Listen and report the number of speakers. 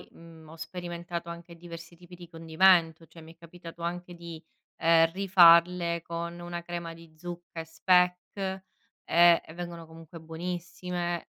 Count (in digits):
1